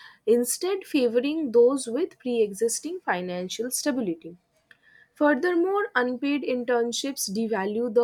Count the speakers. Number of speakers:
1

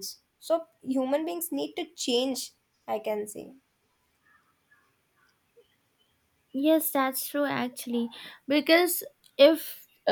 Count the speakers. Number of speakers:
2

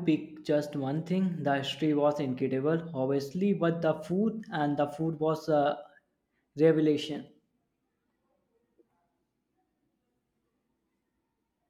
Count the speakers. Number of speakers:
1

